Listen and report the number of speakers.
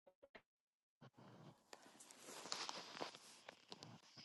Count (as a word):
zero